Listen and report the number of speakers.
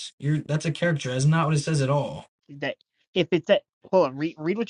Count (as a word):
two